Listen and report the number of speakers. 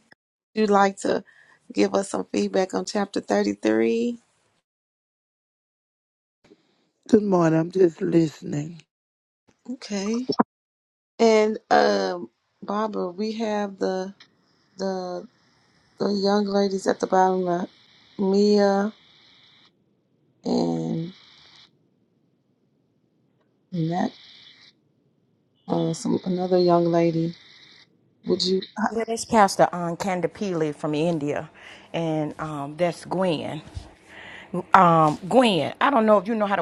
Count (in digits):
3